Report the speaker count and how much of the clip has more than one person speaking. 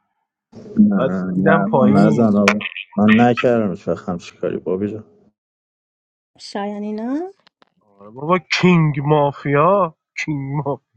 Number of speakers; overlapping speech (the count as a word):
three, about 12%